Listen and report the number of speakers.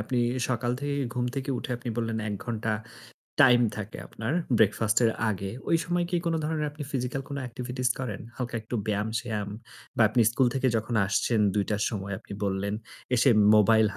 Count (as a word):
one